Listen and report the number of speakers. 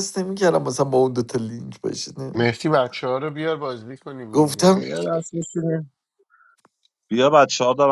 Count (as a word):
three